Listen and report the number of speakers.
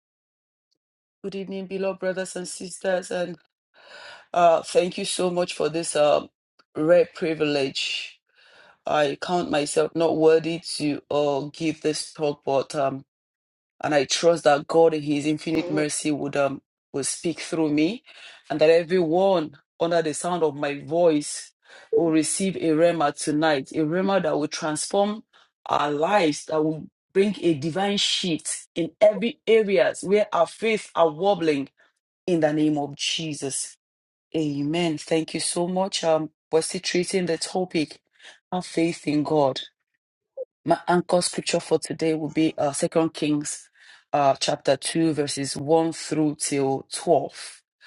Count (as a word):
one